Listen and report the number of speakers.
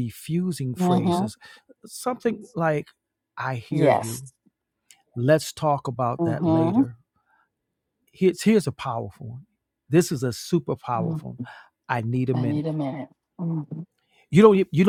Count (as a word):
two